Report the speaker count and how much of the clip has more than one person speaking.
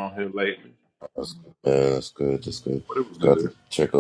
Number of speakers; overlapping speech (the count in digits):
2, about 7%